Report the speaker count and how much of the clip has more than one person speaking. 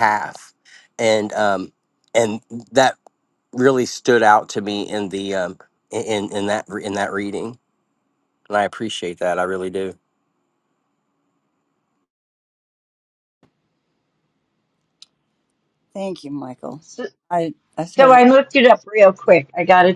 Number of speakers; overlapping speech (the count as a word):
three, about 1%